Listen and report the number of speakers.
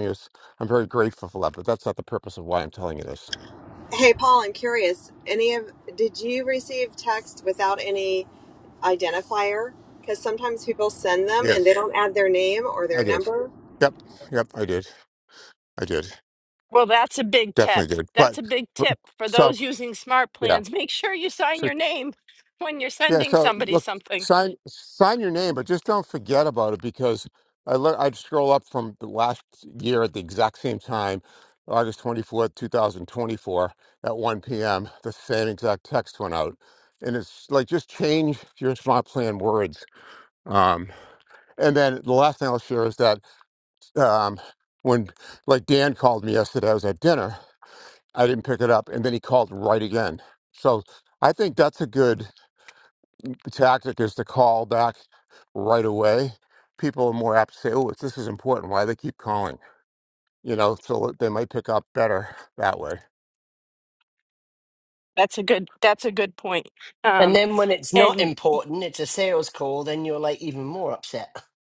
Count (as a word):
four